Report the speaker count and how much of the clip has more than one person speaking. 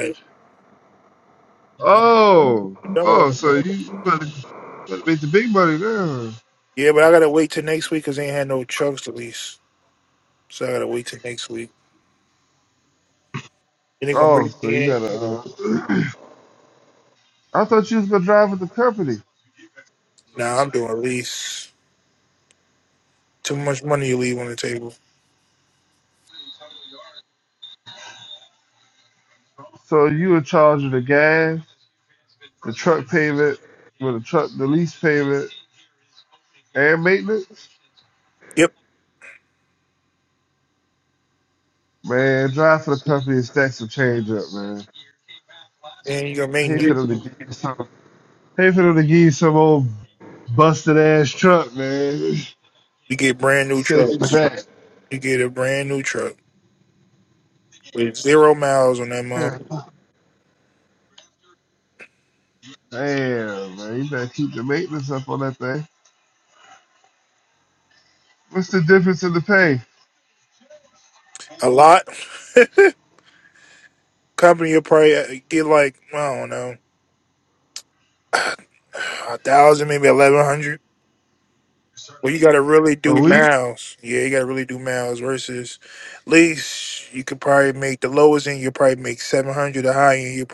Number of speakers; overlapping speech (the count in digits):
2, about 5%